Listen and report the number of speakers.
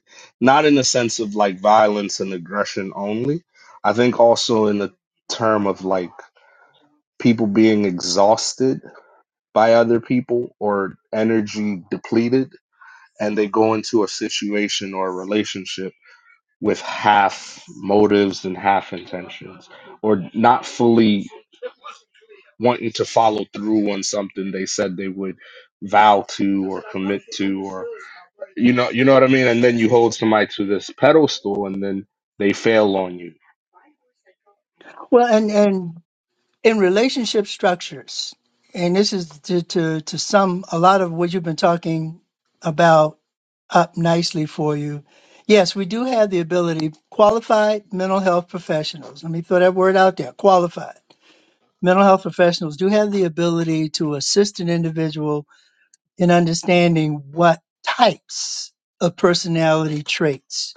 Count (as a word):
two